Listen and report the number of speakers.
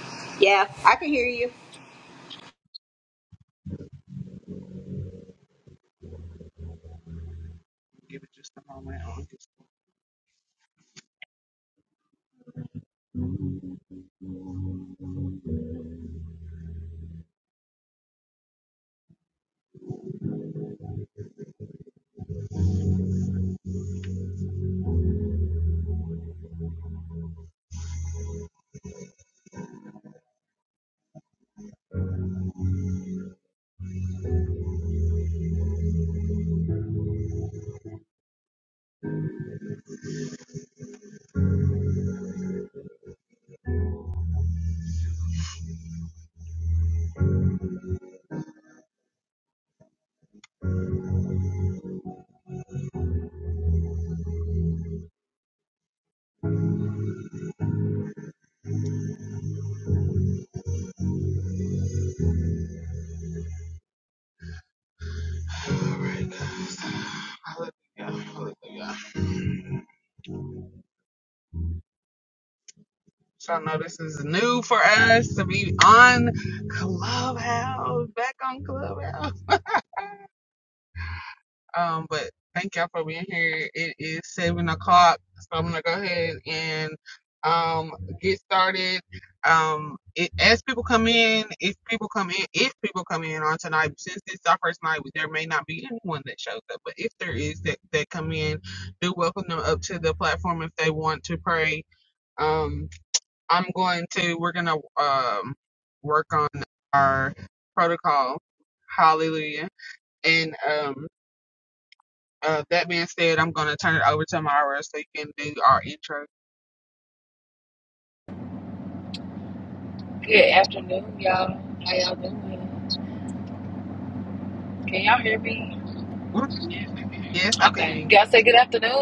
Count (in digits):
3